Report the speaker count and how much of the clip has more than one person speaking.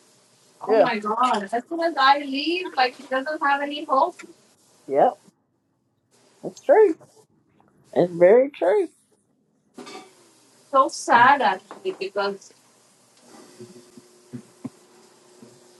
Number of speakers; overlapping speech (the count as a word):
two, about 2%